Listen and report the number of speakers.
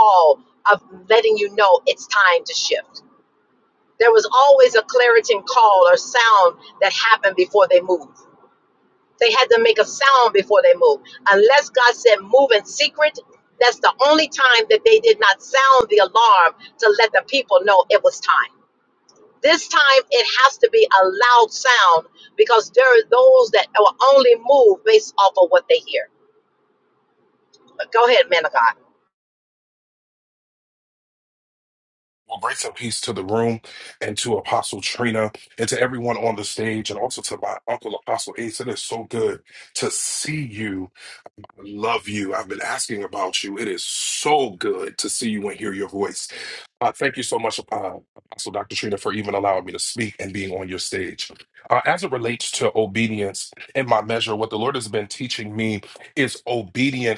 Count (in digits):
2